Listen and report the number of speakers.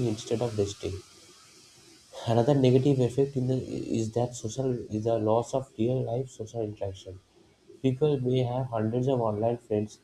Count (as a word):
one